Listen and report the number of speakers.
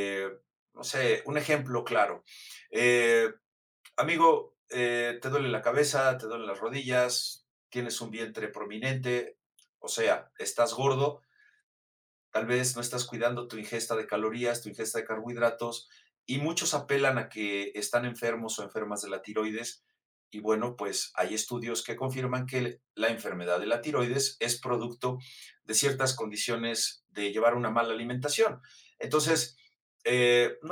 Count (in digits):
1